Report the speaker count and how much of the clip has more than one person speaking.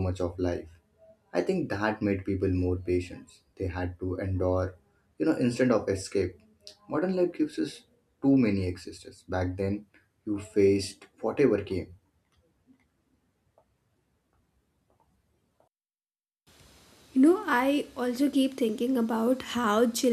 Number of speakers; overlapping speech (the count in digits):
2, no overlap